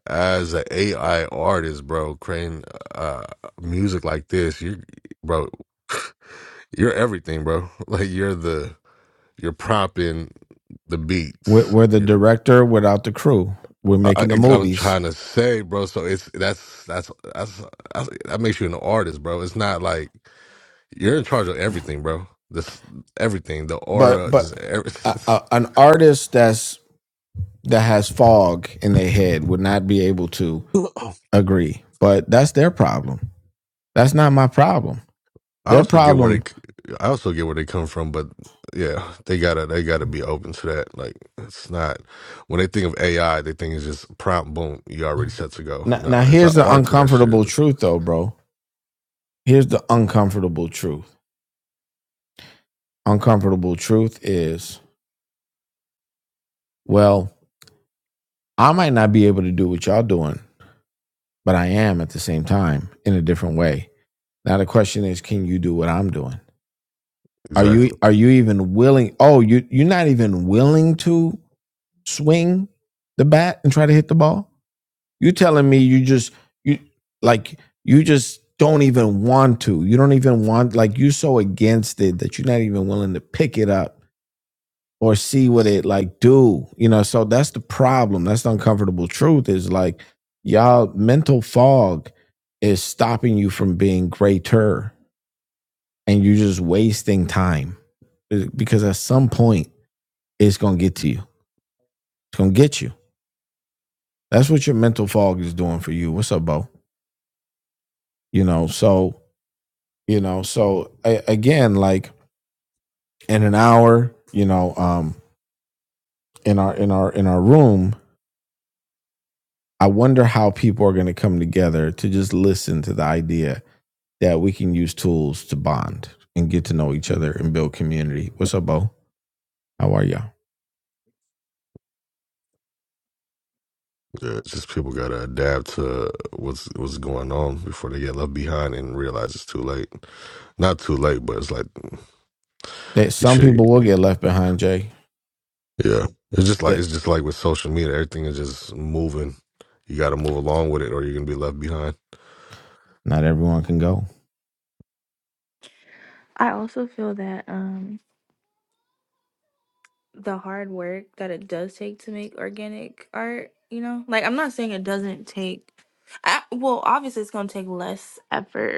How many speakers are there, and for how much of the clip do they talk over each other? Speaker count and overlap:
three, about 3%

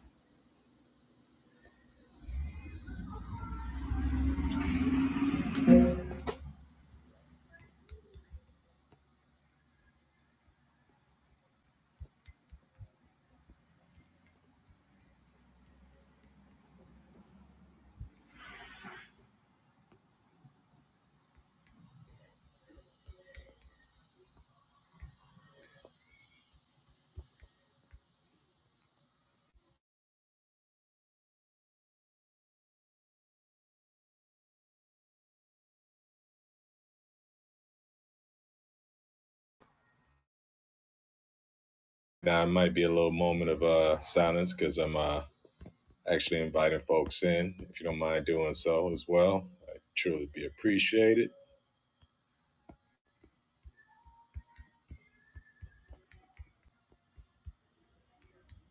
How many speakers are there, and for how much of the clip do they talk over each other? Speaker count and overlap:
one, no overlap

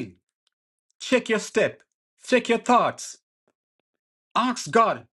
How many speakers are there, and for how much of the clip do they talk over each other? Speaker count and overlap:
one, no overlap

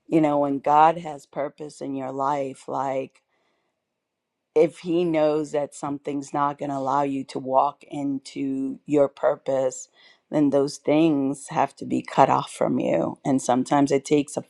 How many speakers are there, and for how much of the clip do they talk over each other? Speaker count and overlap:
one, no overlap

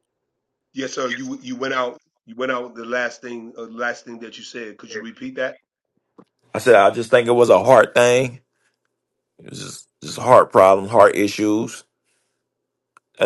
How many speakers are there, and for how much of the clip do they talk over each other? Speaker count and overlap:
two, no overlap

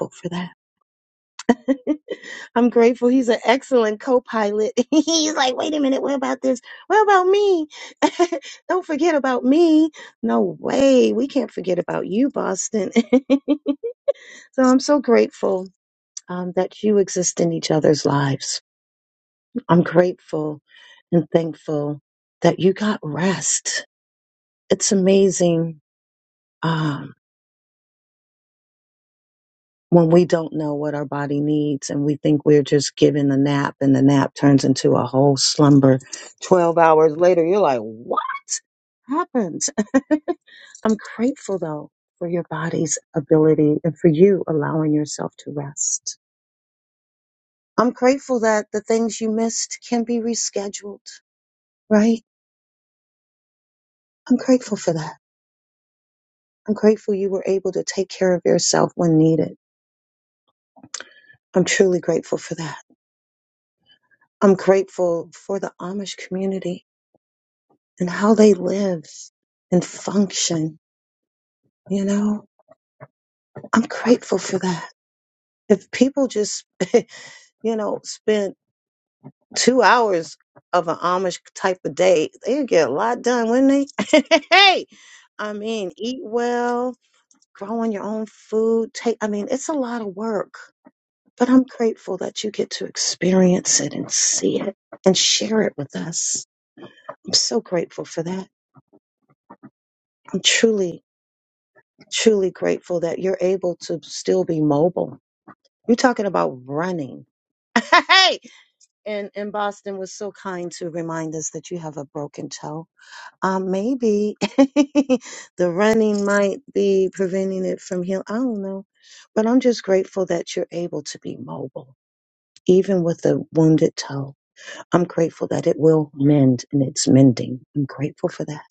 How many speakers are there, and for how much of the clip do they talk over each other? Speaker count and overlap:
one, no overlap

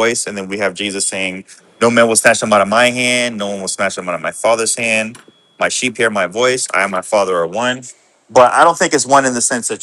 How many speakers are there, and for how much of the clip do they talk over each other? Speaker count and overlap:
one, no overlap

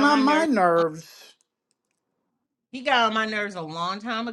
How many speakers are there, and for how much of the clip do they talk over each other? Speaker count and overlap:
two, about 11%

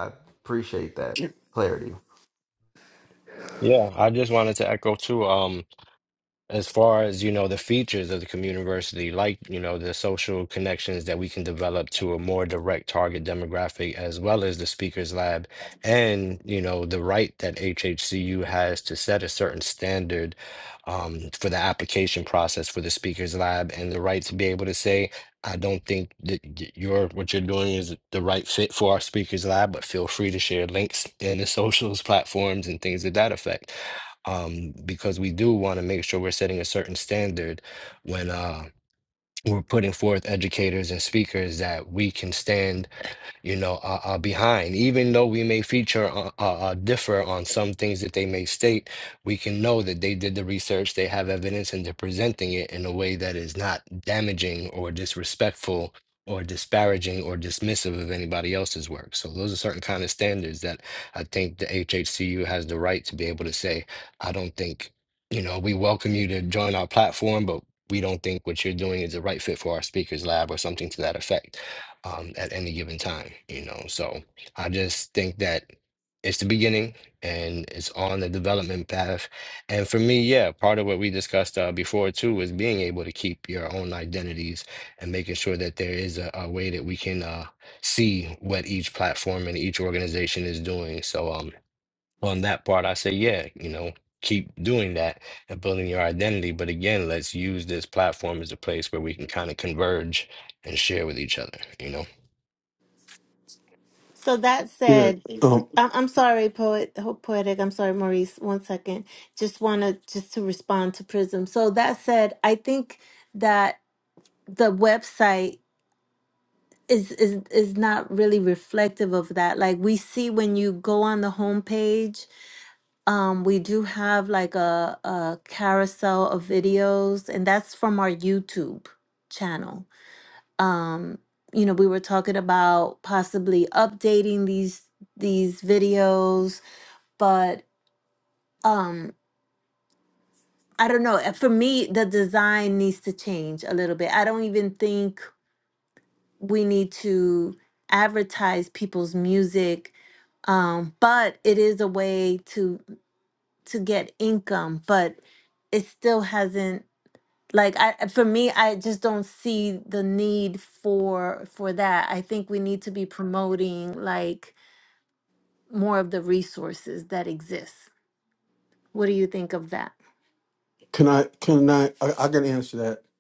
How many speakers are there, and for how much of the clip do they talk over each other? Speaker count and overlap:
four, under 1%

